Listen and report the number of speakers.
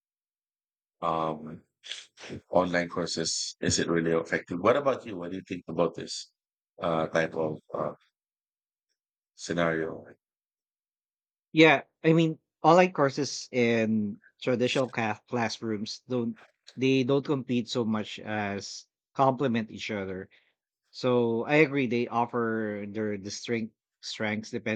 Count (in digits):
2